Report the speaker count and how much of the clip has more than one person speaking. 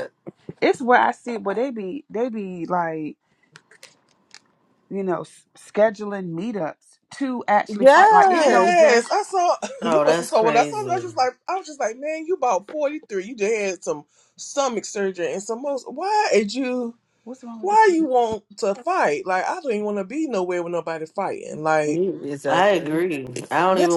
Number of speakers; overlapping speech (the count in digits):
4, about 16%